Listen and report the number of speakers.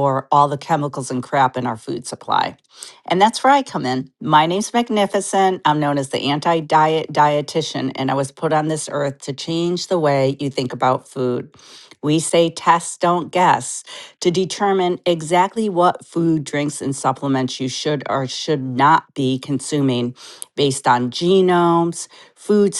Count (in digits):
1